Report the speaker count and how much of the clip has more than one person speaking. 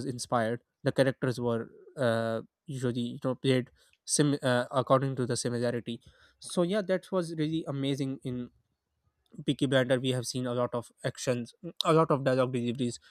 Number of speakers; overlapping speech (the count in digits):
1, no overlap